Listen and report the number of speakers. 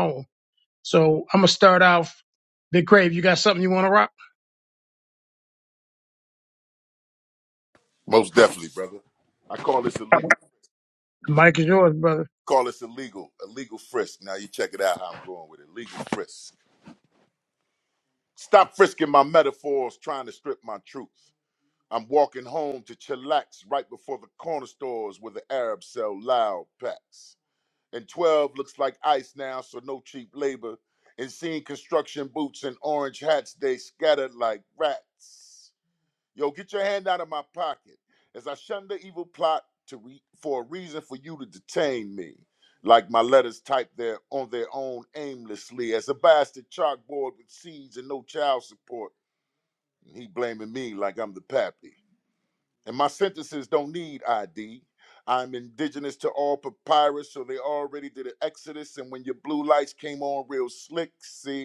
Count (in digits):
2